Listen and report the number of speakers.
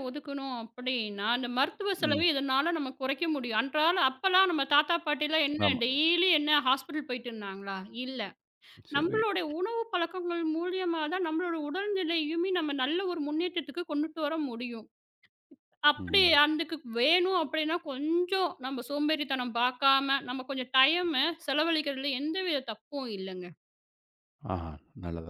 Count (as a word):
two